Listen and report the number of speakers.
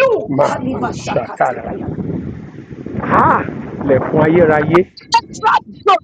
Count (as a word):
two